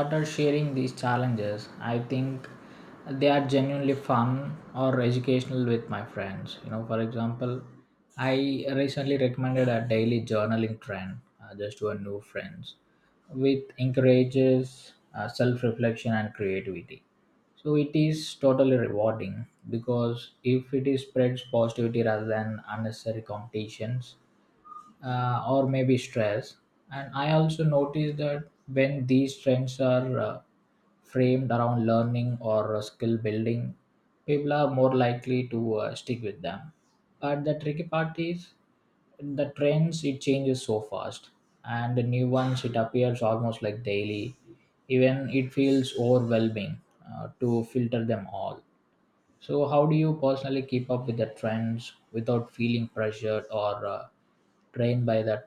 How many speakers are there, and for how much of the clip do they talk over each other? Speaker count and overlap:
one, no overlap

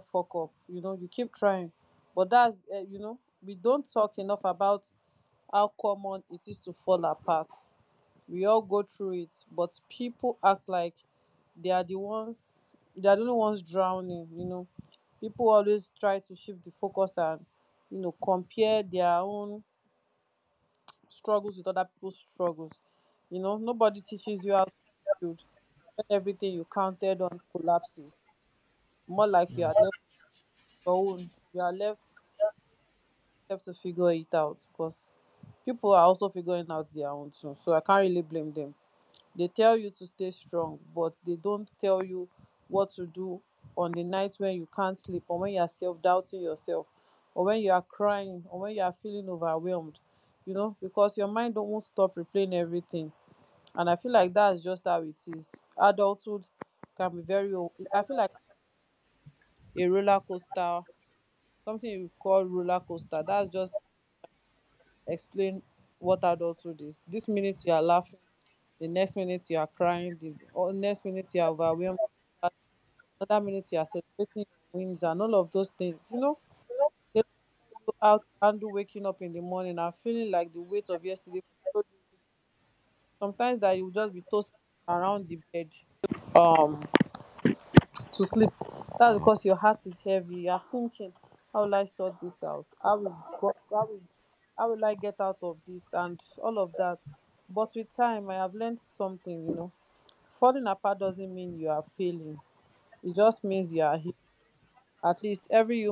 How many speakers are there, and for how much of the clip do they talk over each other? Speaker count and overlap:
one, no overlap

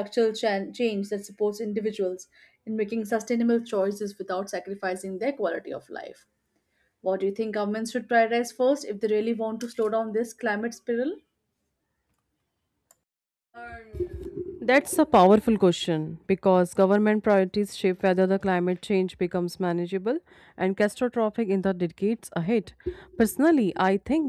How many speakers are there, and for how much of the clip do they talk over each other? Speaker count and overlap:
two, no overlap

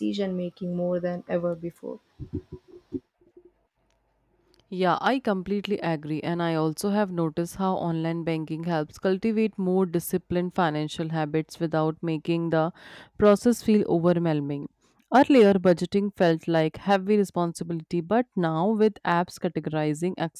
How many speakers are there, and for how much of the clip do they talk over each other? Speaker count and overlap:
two, no overlap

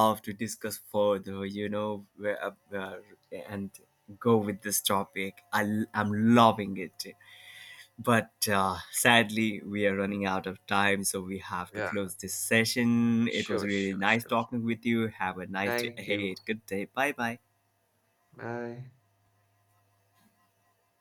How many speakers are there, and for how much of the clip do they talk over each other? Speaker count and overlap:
two, about 9%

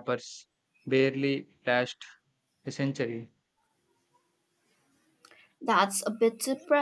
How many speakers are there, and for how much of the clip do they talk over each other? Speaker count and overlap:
two, no overlap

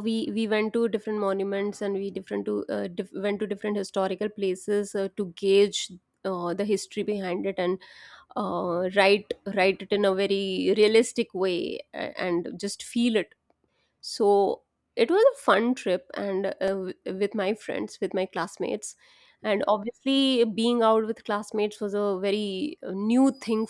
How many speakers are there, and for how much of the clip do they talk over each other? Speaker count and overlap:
one, no overlap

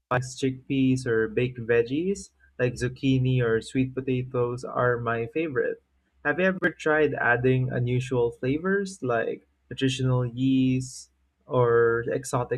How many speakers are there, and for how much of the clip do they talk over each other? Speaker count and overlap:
one, no overlap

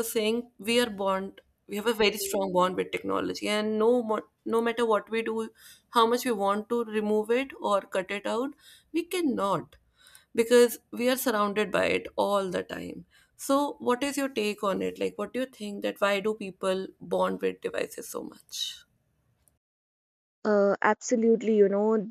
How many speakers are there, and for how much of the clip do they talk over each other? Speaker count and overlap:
two, no overlap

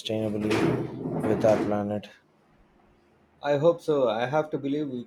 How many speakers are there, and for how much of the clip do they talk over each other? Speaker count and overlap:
two, no overlap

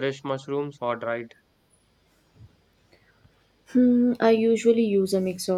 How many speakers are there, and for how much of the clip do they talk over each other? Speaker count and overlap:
two, no overlap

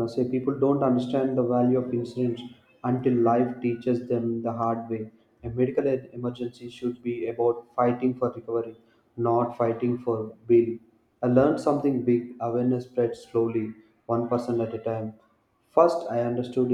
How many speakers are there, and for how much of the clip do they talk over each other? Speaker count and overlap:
one, no overlap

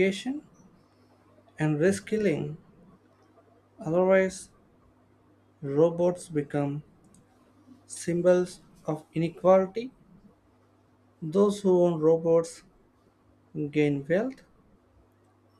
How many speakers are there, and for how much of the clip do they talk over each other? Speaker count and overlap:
one, no overlap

